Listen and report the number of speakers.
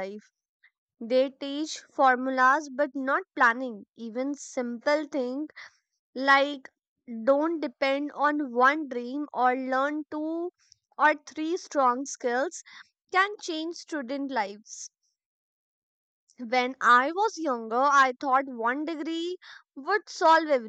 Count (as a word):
one